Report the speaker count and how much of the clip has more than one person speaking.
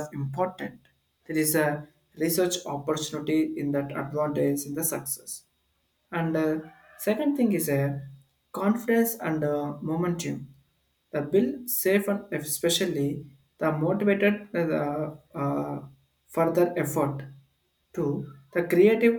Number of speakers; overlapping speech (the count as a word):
one, no overlap